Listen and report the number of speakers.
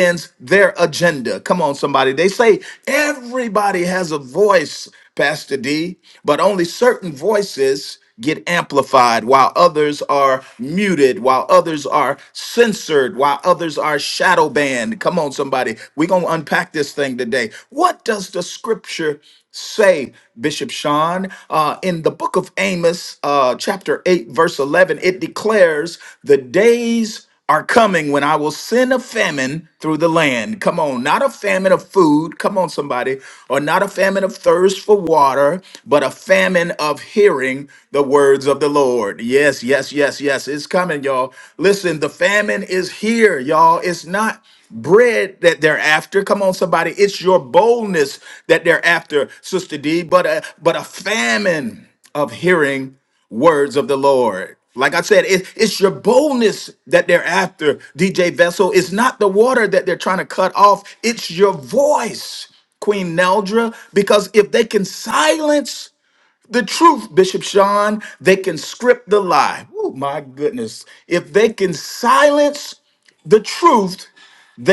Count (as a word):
one